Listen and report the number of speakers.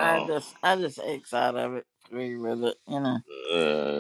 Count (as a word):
two